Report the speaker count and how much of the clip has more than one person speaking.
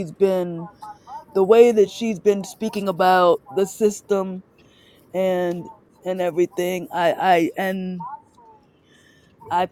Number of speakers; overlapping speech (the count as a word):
one, no overlap